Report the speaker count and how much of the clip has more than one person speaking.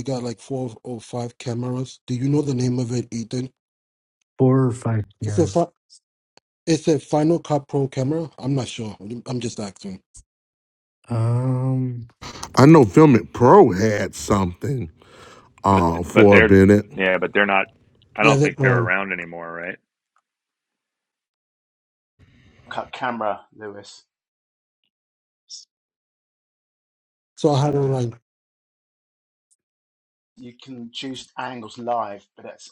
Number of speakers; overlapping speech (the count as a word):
five, about 5%